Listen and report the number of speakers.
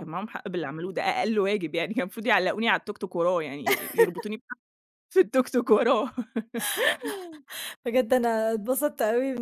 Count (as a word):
two